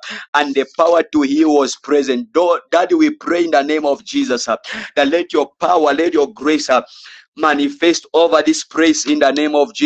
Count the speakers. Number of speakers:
one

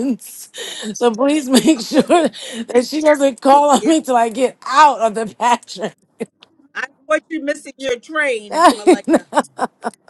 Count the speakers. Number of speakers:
two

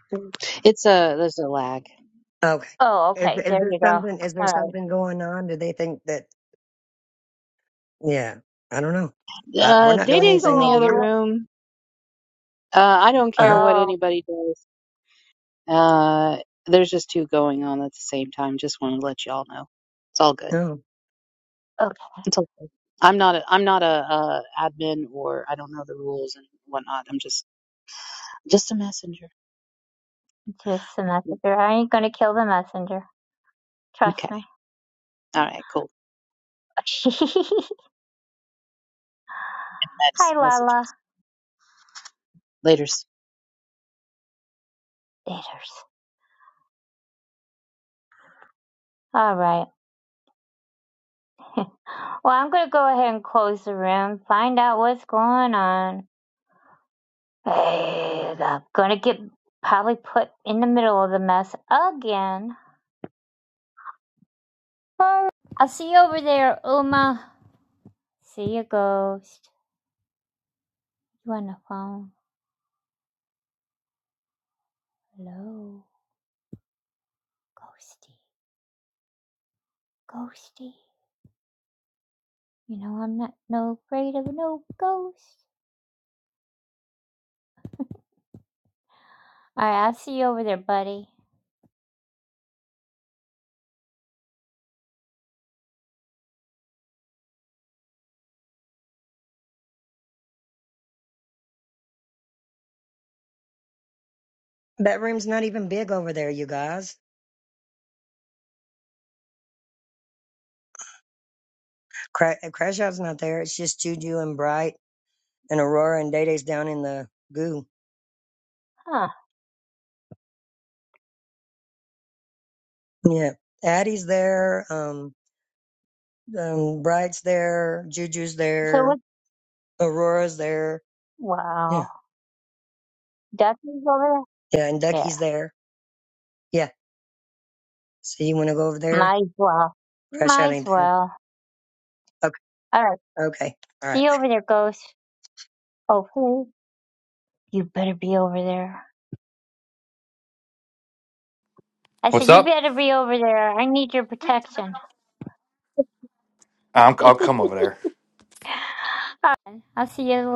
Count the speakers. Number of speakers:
four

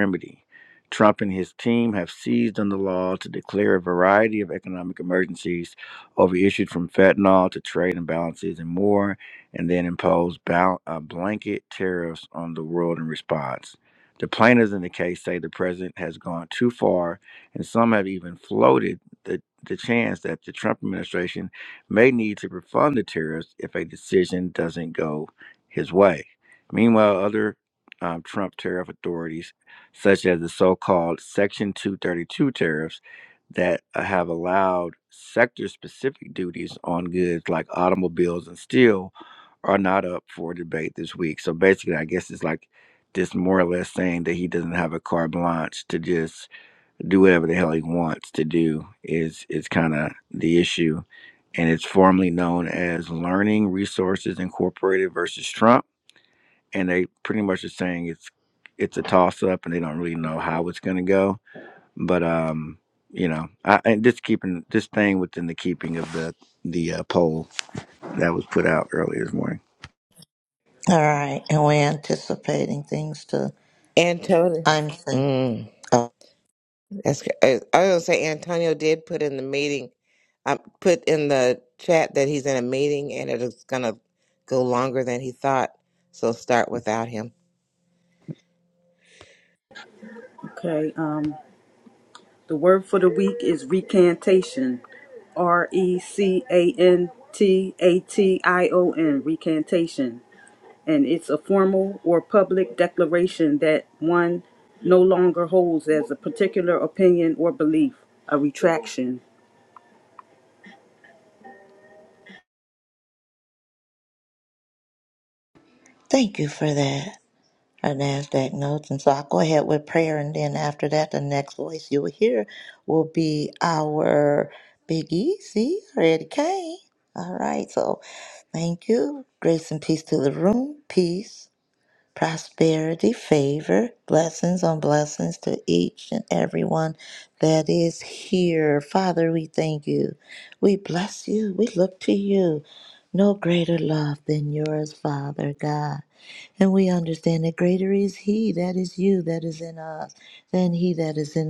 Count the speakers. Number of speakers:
four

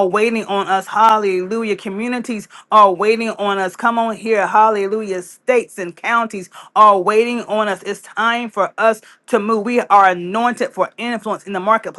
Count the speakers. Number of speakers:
one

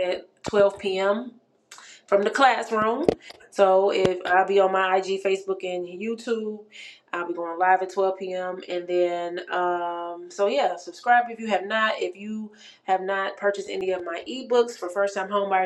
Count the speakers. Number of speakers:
one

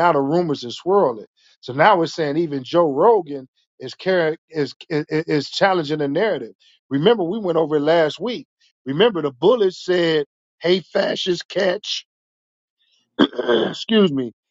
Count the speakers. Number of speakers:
one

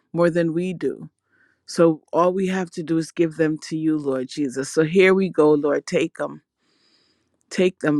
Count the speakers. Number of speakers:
one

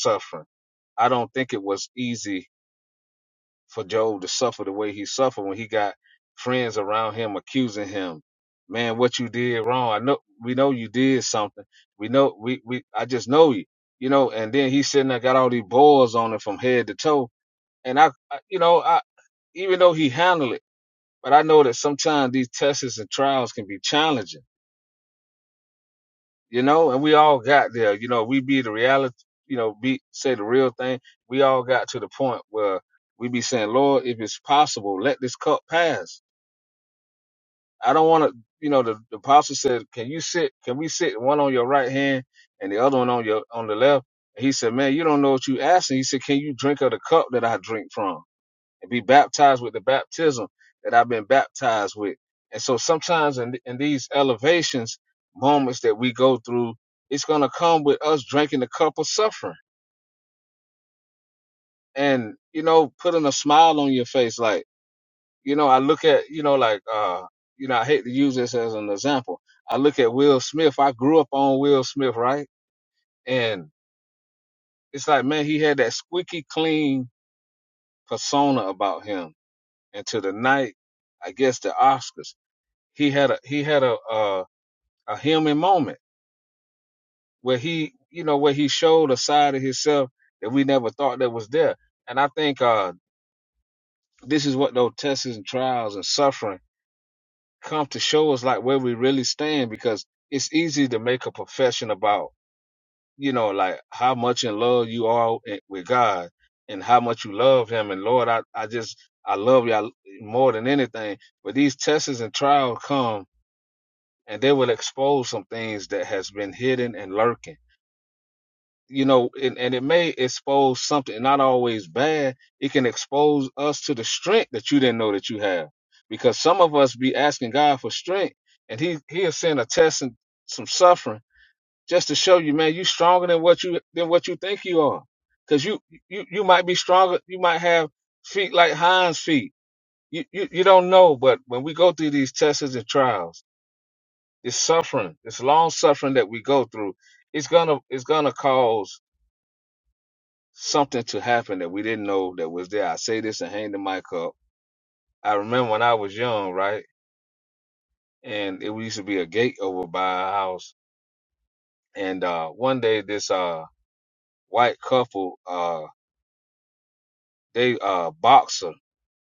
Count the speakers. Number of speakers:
one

